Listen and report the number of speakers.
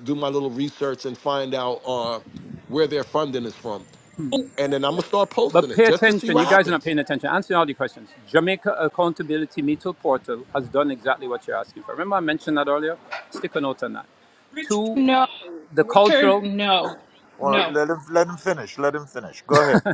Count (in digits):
4